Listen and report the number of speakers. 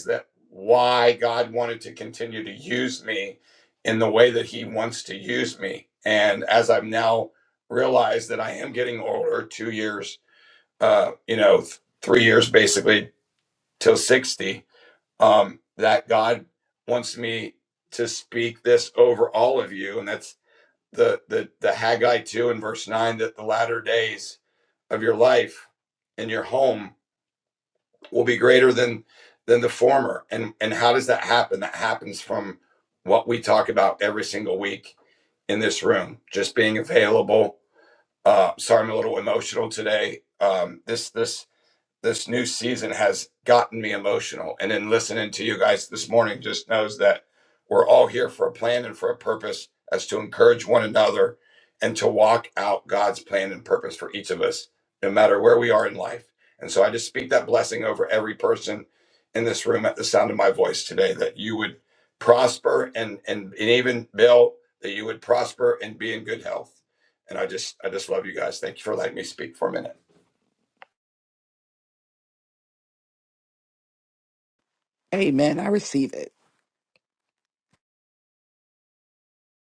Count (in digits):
2